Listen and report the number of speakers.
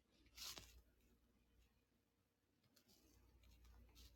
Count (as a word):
zero